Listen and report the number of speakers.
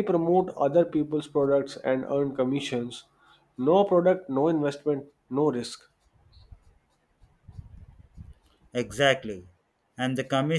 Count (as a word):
two